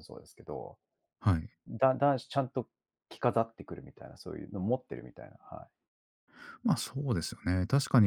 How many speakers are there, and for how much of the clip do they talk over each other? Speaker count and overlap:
2, no overlap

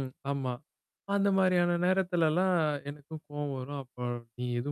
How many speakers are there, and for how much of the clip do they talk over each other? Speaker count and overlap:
1, no overlap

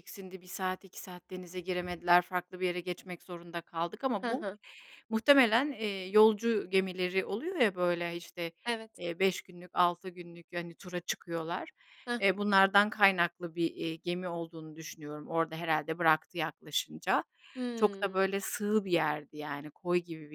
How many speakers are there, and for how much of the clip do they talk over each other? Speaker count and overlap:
2, about 5%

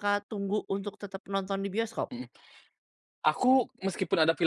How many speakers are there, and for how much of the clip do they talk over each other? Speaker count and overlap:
2, no overlap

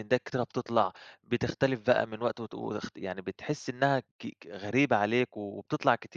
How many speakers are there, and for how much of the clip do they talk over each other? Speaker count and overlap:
1, no overlap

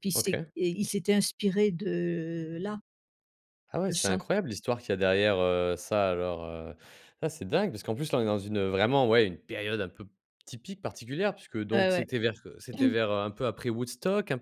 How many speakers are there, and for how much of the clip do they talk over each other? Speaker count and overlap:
2, about 7%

